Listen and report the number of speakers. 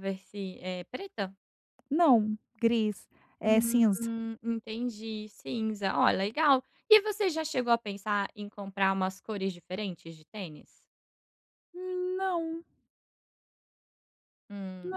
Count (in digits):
2